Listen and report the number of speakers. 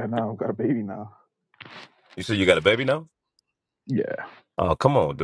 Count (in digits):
2